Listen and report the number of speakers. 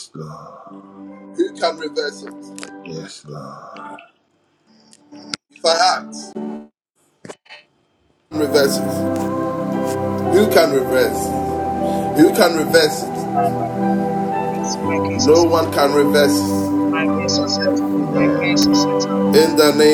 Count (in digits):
3